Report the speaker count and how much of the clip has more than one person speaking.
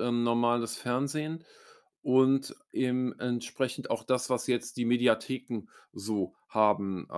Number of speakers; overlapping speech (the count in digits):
1, no overlap